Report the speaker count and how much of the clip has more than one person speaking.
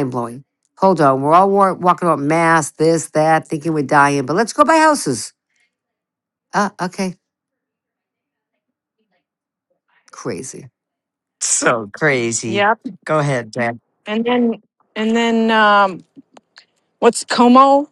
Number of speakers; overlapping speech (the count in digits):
3, about 1%